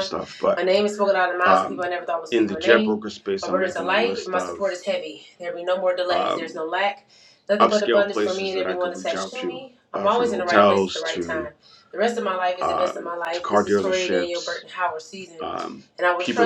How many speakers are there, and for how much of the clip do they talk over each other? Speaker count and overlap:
2, about 52%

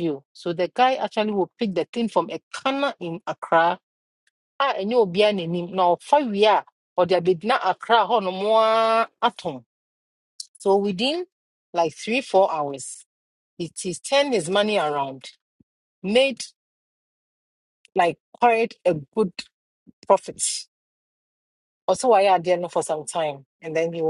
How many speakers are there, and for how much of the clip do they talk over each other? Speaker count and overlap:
1, no overlap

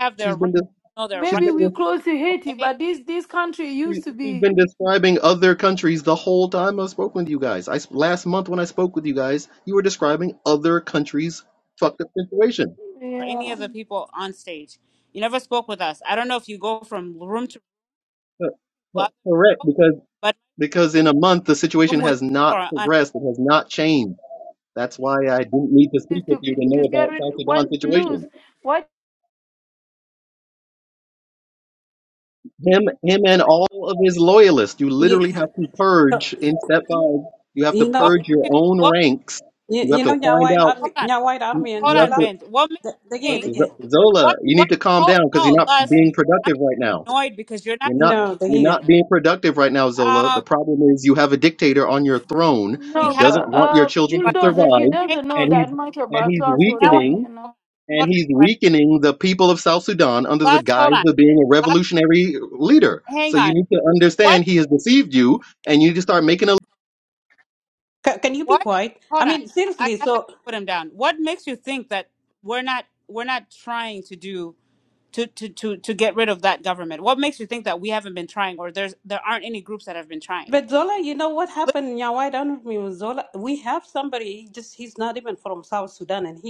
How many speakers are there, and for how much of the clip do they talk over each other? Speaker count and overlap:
4, about 21%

